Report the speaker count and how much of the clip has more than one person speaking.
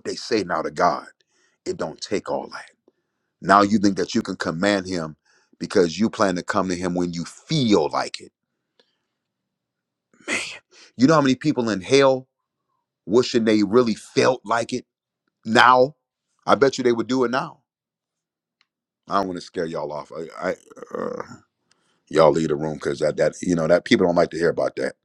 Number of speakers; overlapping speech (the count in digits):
1, no overlap